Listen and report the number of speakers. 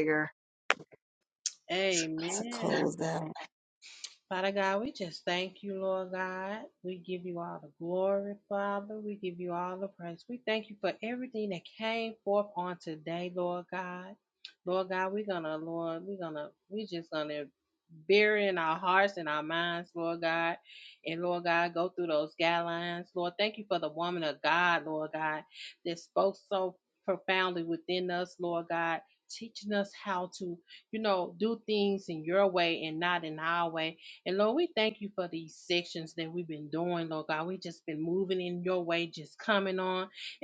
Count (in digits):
2